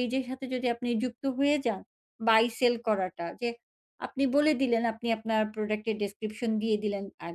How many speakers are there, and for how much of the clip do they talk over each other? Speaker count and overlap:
one, no overlap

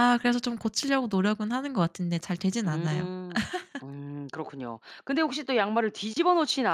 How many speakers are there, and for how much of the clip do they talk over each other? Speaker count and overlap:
two, about 6%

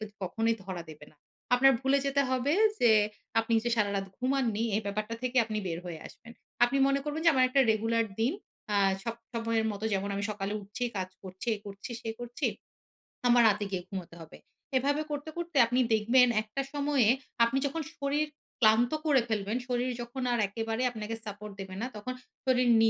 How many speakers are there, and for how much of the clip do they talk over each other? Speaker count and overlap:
one, no overlap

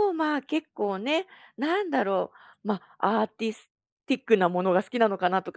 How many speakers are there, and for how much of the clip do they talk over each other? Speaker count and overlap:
one, no overlap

